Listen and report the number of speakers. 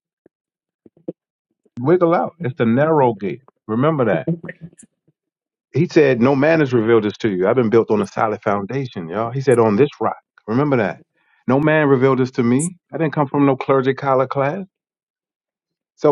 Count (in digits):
1